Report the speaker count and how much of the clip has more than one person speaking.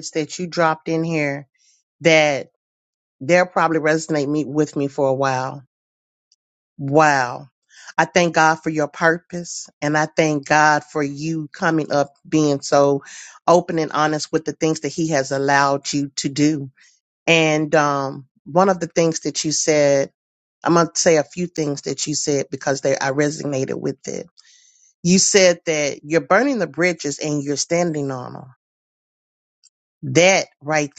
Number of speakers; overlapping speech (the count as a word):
one, no overlap